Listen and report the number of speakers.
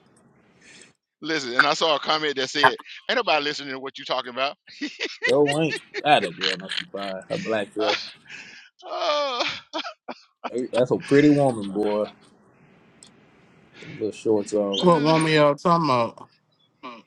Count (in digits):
3